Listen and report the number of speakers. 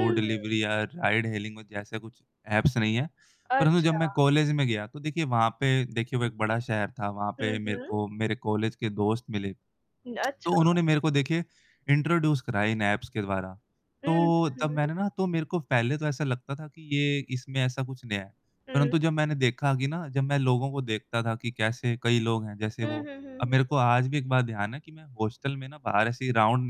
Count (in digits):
2